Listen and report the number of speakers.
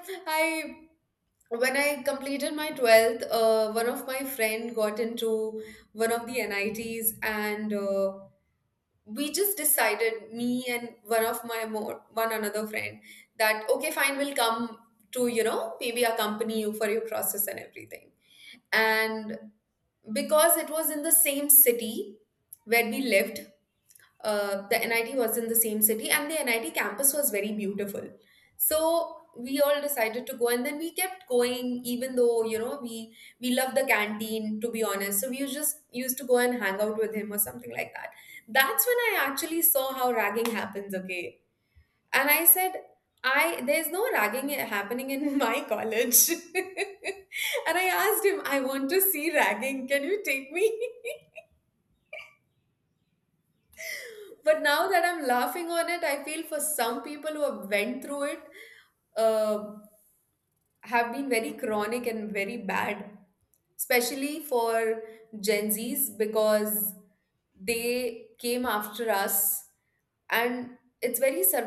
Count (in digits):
1